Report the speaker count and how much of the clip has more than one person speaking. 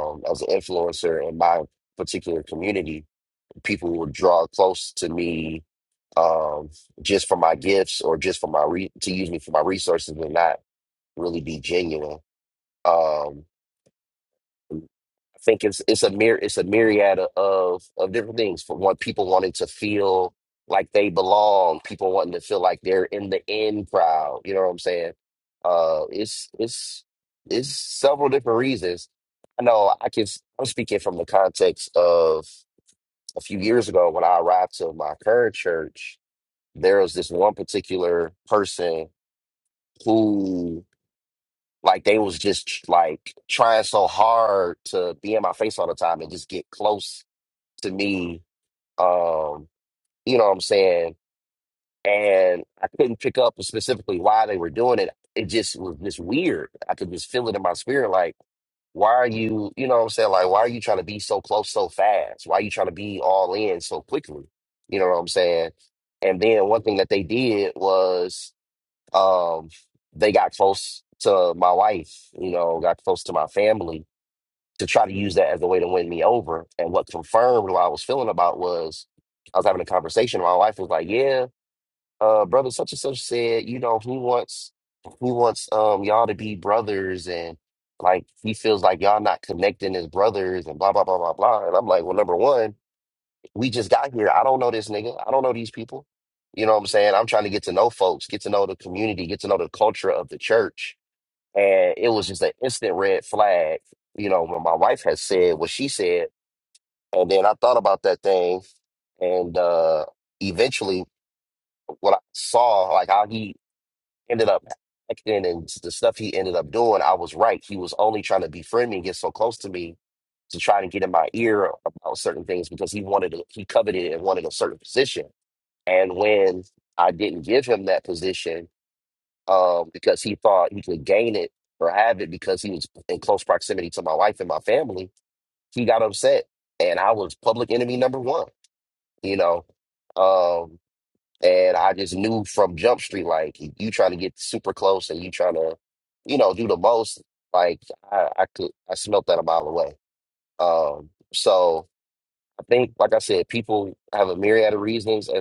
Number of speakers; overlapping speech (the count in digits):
1, no overlap